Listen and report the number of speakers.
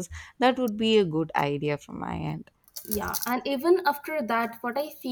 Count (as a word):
two